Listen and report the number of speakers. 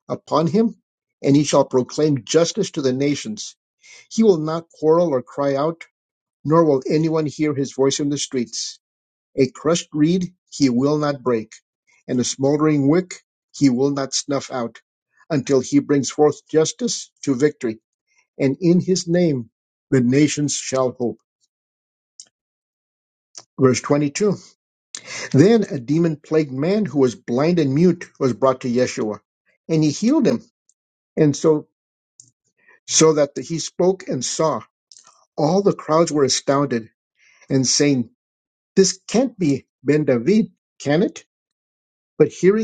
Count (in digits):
1